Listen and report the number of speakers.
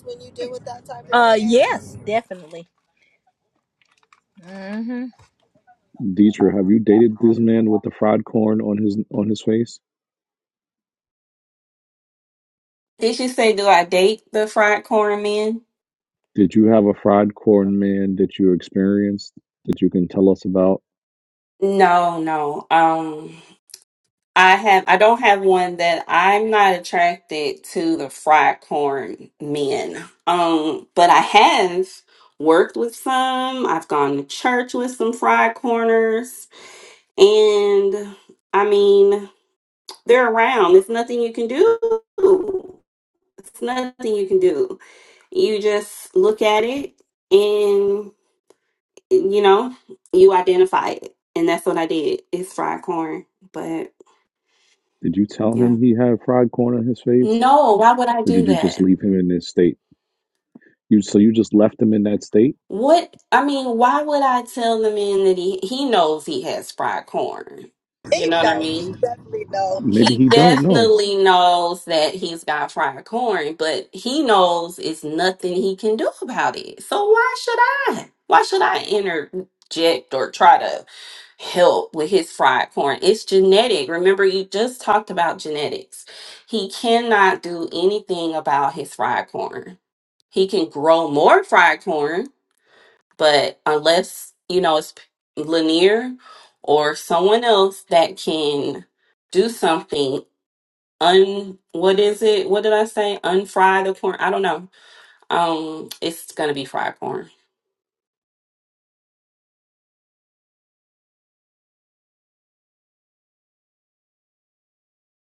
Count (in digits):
5